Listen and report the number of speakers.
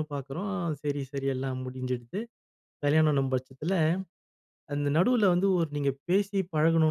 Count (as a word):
one